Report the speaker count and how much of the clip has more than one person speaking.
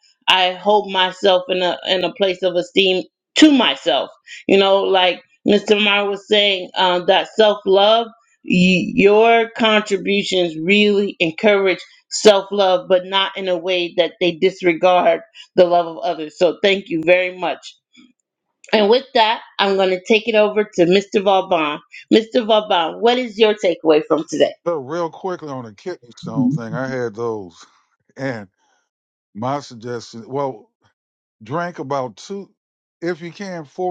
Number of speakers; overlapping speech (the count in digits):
2, no overlap